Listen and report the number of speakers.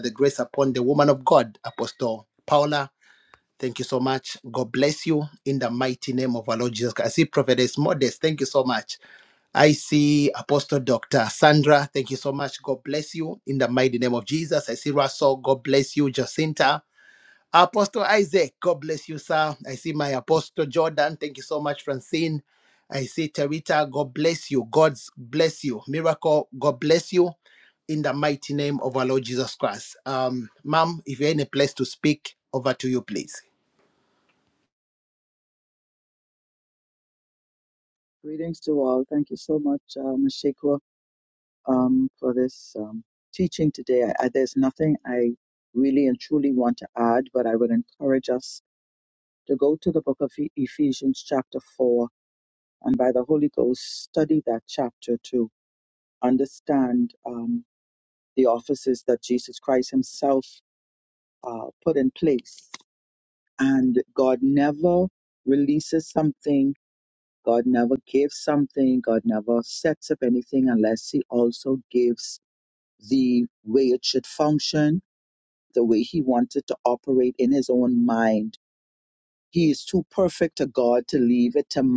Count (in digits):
2